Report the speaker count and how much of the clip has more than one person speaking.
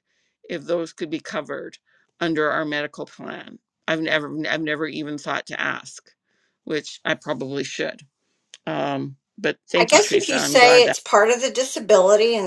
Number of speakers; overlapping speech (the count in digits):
2, about 10%